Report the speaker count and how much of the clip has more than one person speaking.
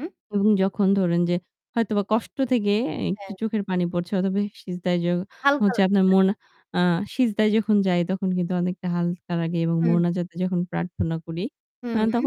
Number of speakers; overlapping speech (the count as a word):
two, about 11%